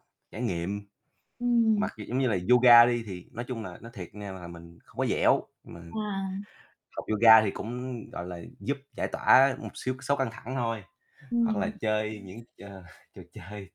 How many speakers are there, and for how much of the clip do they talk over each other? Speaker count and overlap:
two, about 3%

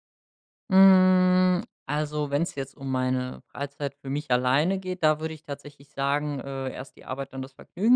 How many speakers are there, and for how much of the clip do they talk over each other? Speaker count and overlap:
one, no overlap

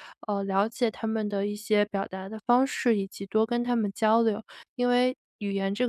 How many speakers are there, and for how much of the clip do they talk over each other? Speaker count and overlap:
one, no overlap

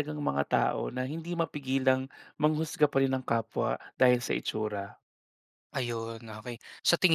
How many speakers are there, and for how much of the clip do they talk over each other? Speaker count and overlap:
two, no overlap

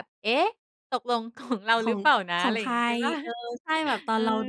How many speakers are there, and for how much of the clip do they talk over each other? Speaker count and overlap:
two, about 23%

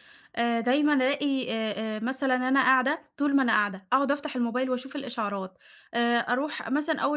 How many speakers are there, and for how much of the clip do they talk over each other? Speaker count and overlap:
one, no overlap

